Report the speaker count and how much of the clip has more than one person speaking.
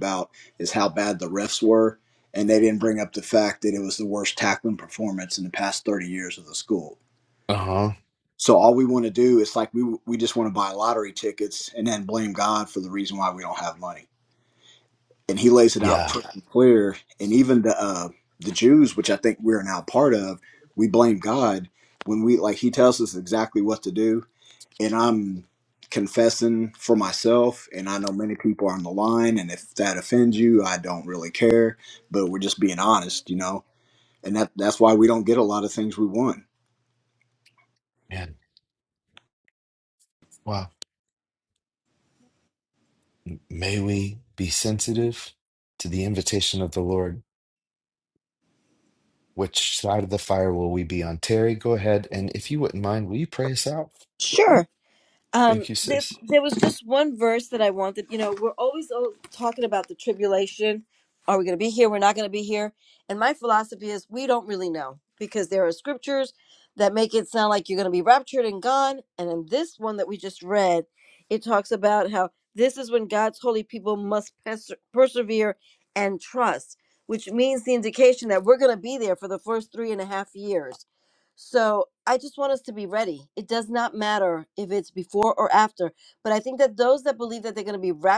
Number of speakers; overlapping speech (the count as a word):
three, about 1%